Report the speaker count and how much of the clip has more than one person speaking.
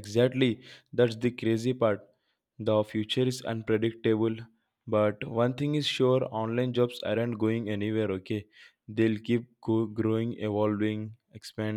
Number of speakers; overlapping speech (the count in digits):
1, no overlap